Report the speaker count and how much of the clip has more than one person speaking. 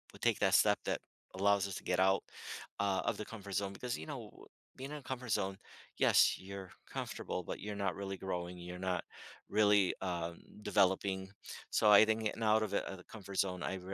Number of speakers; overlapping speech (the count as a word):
one, no overlap